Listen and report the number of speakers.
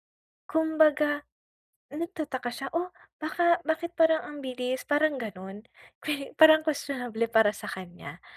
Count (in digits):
1